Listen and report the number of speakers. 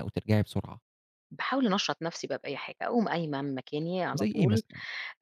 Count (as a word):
two